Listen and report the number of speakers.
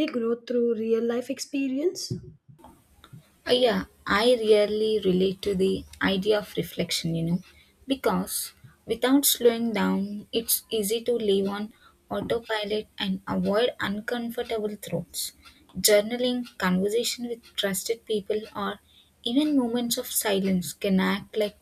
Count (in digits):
2